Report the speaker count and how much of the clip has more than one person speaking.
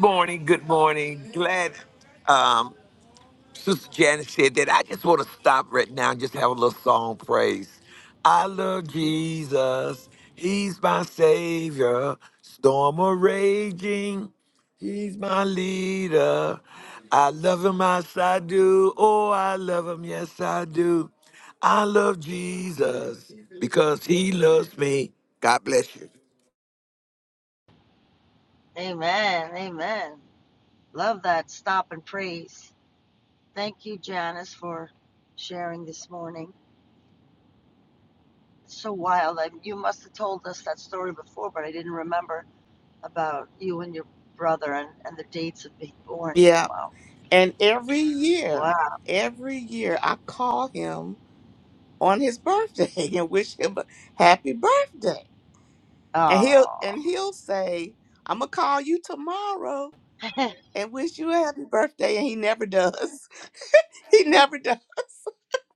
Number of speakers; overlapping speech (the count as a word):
three, about 2%